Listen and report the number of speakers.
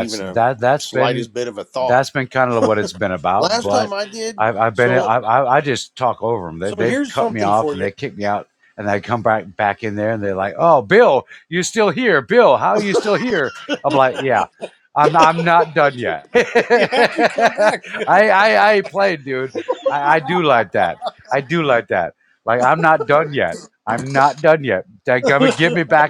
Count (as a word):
two